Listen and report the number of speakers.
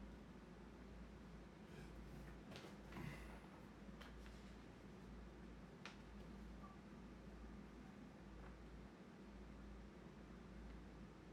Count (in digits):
0